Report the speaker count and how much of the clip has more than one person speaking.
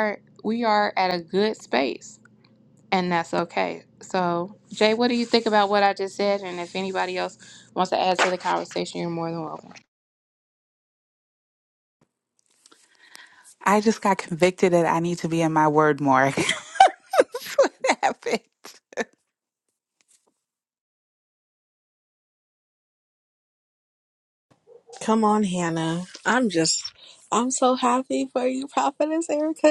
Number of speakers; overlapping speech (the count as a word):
three, no overlap